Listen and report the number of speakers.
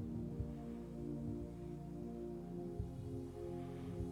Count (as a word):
zero